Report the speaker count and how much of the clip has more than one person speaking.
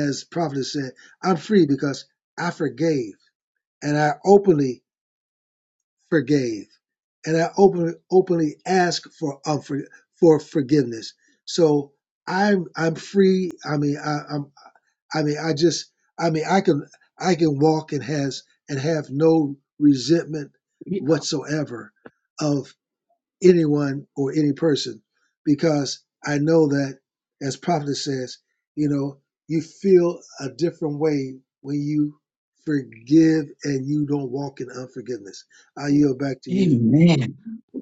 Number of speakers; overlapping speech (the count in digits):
2, about 1%